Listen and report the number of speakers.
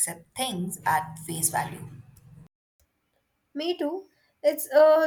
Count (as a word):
two